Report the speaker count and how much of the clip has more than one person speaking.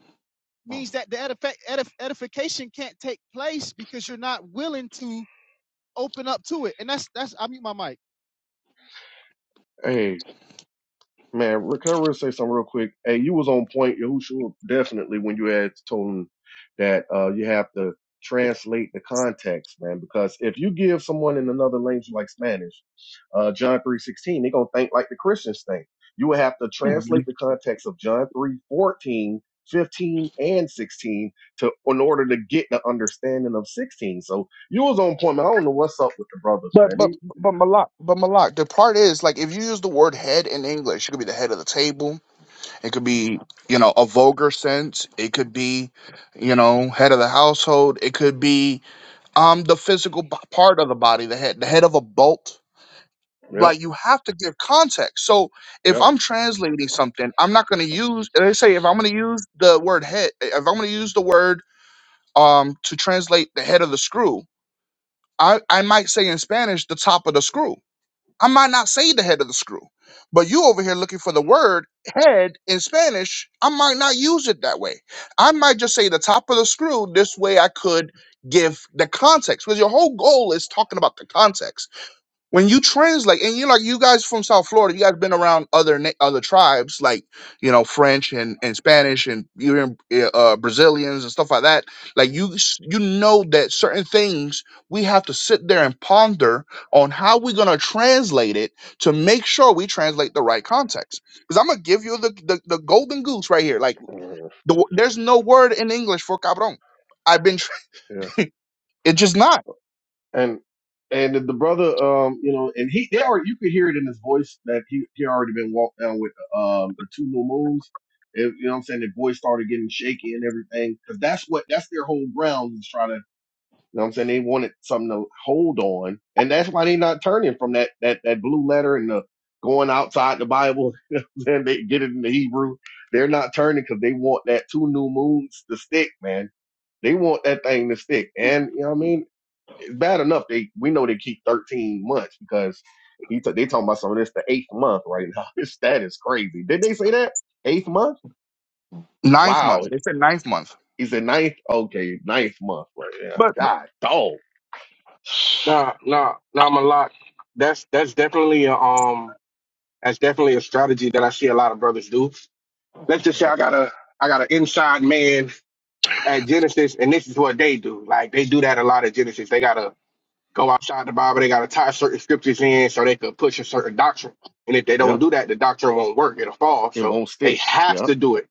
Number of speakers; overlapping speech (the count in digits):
4, about 2%